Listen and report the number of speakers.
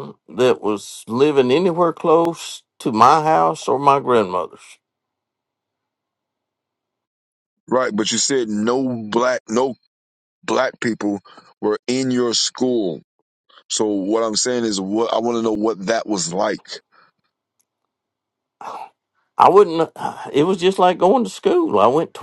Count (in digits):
2